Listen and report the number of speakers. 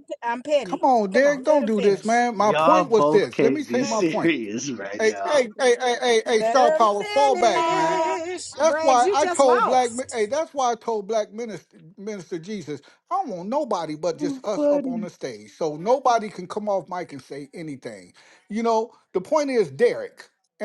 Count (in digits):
3